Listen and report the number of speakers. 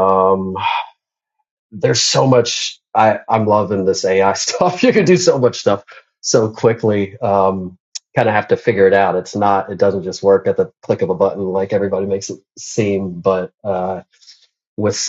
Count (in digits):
1